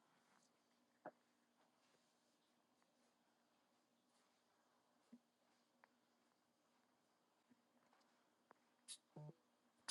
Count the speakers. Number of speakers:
0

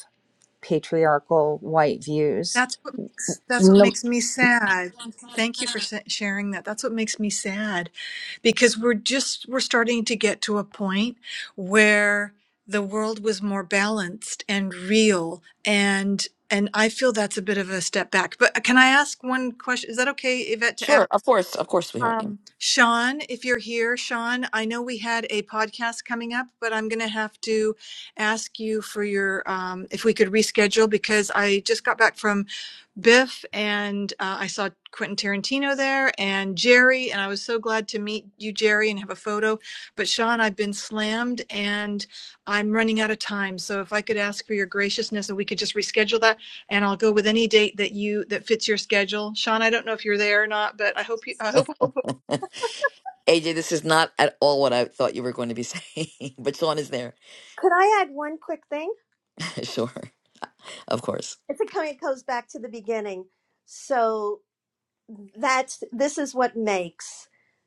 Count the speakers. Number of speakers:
4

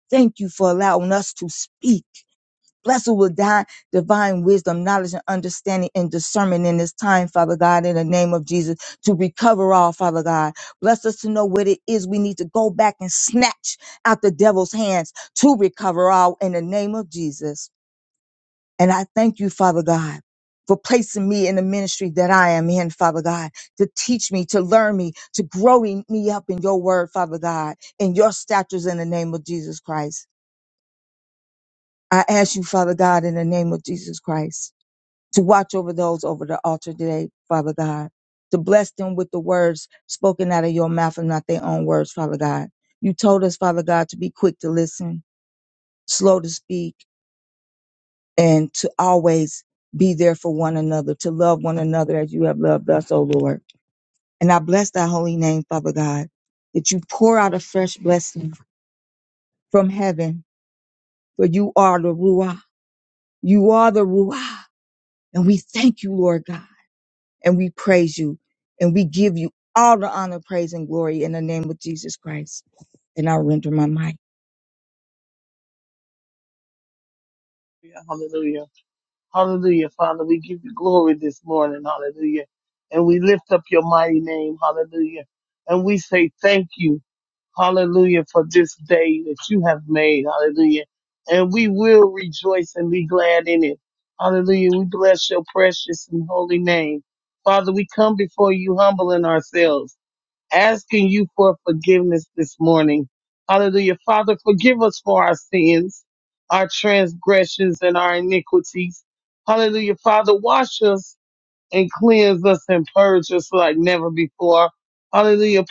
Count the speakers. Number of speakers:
2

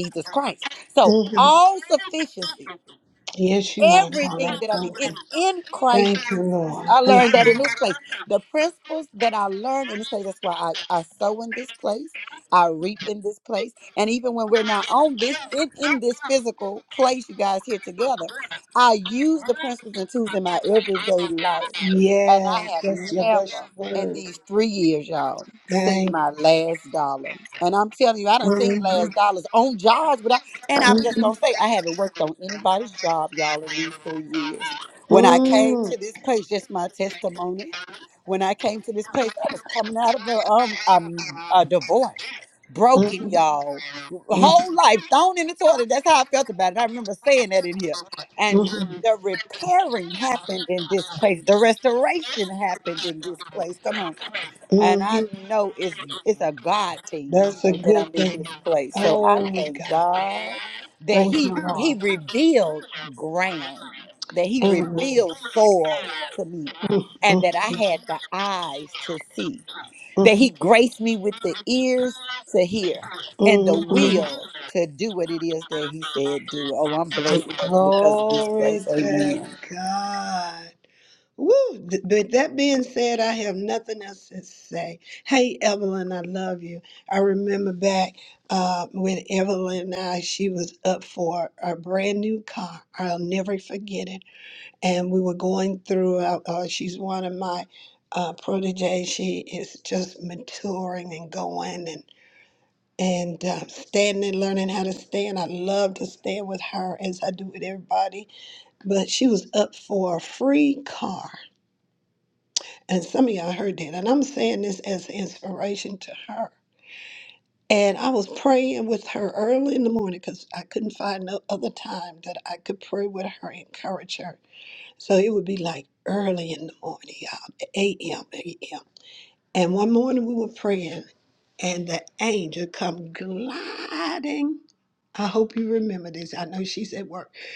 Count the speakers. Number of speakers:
2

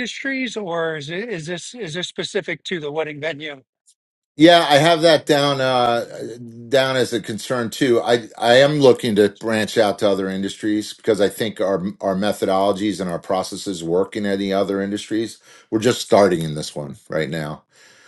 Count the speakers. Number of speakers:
2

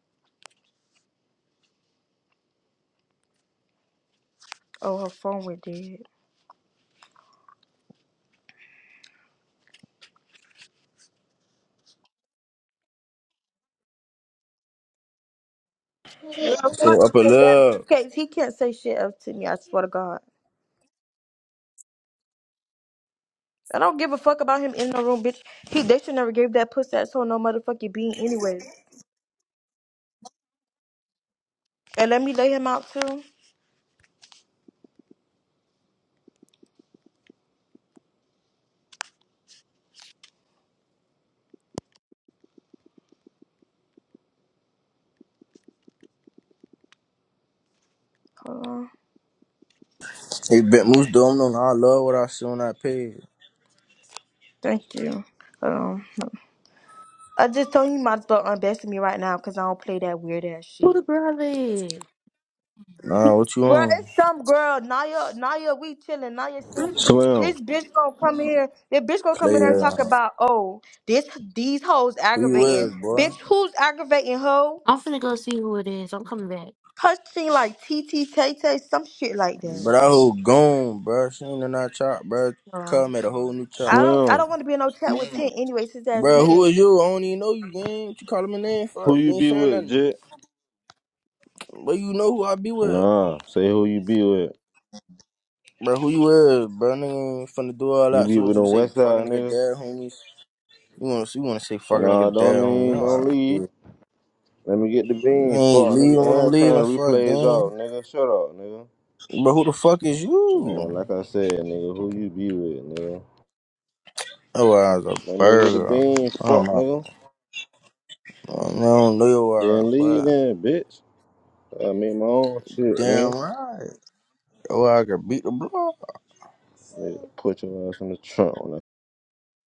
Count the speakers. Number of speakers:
4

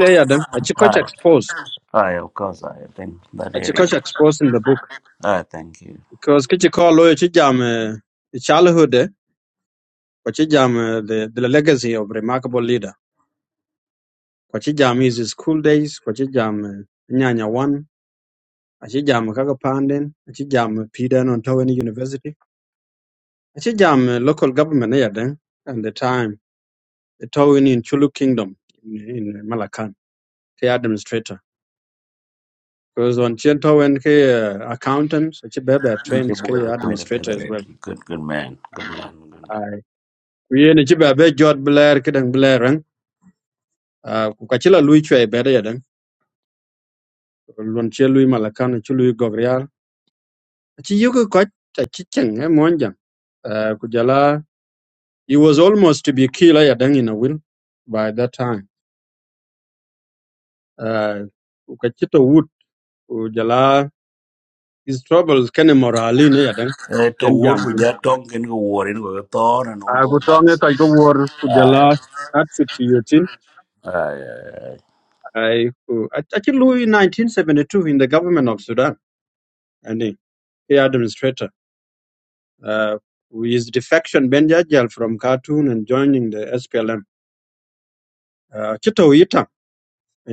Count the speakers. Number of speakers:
2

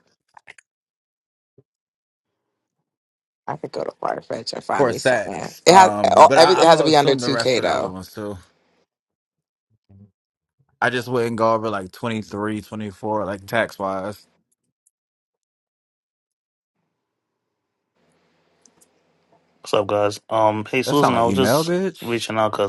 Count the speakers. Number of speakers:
3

